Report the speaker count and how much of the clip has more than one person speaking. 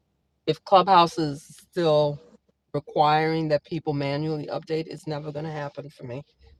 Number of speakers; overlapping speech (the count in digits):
1, no overlap